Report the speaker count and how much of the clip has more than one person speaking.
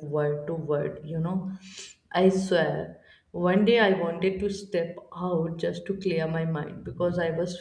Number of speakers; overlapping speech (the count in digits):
1, no overlap